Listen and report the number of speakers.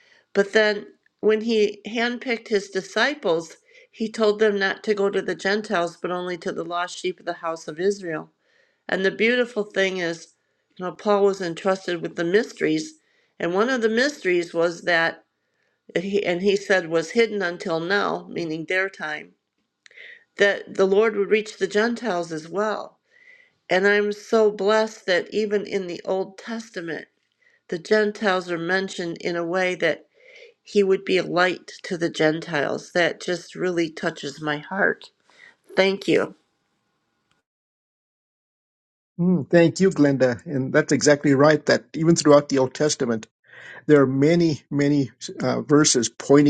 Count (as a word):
two